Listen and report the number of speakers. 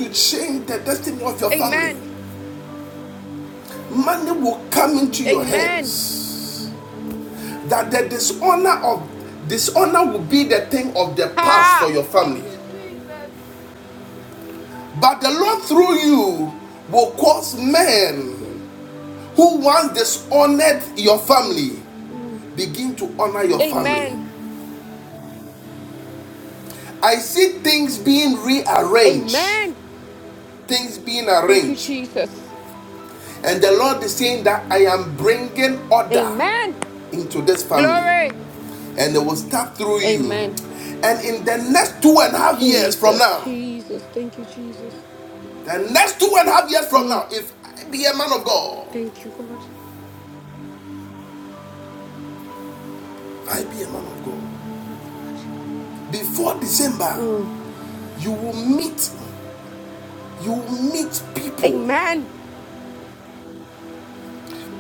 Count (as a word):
two